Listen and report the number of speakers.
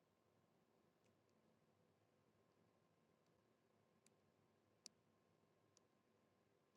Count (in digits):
0